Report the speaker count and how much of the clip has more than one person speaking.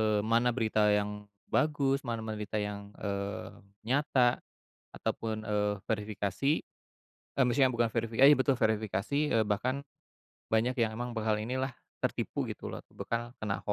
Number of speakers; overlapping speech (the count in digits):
1, no overlap